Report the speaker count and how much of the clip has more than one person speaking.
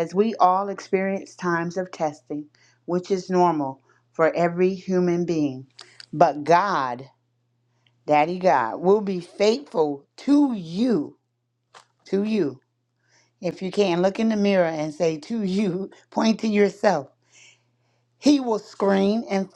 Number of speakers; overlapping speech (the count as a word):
one, no overlap